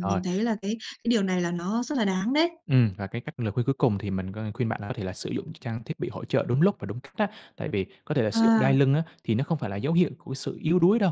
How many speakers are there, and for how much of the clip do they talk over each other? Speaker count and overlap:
2, about 6%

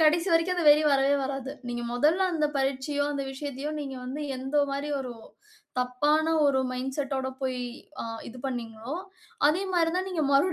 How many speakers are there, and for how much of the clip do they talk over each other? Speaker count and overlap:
1, no overlap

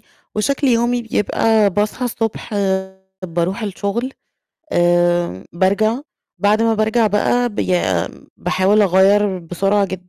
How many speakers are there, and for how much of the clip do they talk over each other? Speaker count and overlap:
1, no overlap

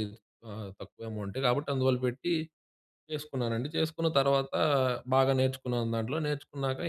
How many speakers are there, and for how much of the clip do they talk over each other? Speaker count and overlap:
1, no overlap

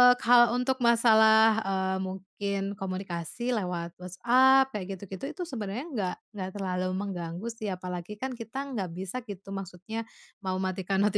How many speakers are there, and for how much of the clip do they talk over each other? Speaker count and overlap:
1, no overlap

